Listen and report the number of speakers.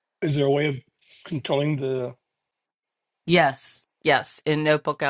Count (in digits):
2